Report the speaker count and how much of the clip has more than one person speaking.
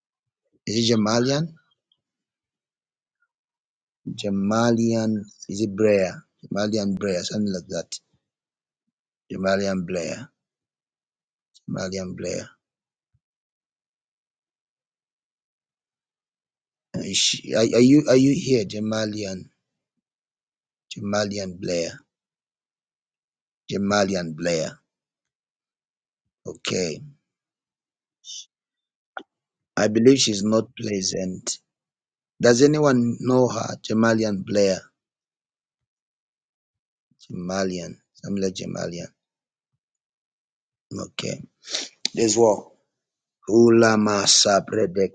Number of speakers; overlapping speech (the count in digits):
1, no overlap